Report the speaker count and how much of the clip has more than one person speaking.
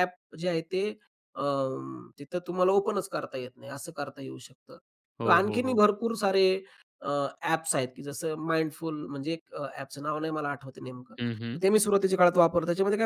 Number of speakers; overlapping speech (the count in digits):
2, about 4%